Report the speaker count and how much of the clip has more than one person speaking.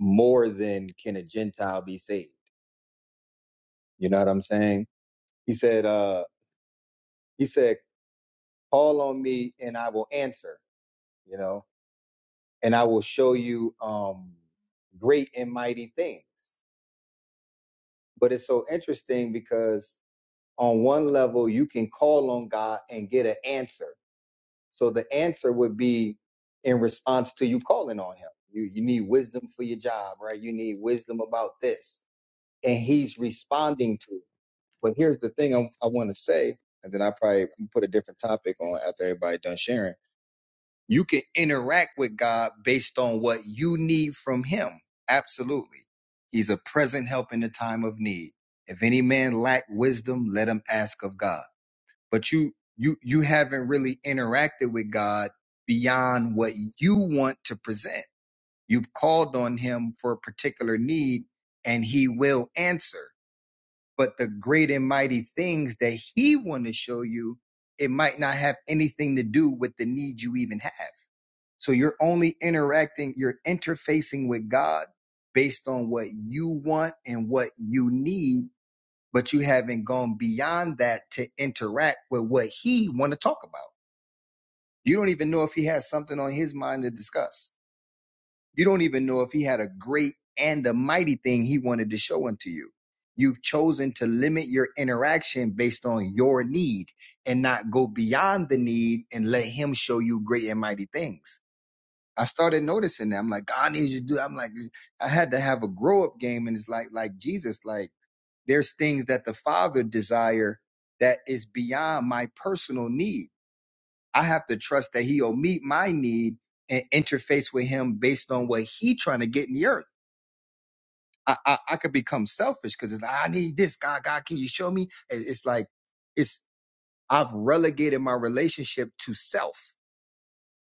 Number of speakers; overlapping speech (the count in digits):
1, no overlap